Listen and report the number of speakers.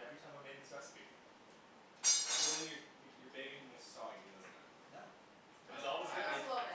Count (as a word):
three